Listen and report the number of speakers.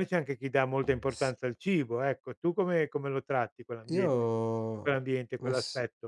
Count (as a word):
two